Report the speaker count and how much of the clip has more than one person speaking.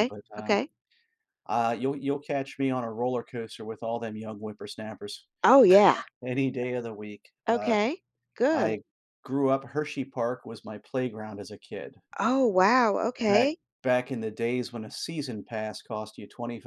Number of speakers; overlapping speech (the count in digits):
2, about 8%